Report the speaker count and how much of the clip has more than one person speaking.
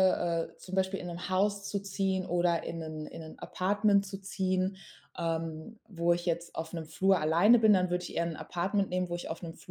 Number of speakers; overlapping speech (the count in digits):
1, no overlap